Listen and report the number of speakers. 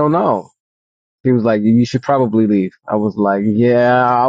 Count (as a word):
one